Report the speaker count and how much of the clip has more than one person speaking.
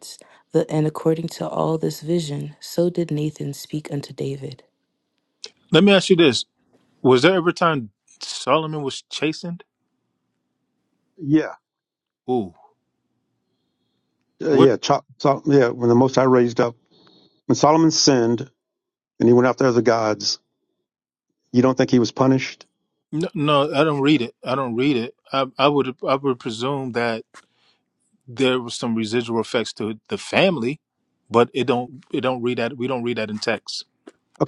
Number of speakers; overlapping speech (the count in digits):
3, under 1%